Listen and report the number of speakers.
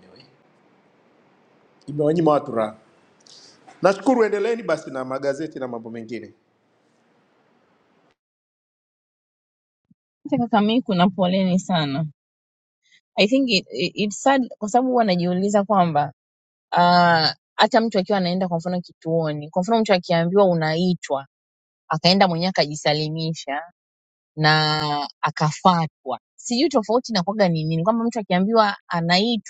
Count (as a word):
two